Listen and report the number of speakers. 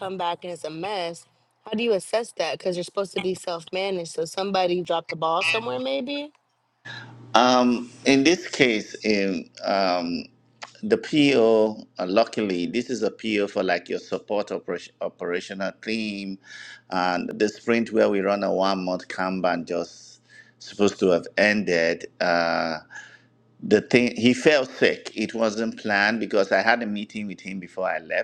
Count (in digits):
2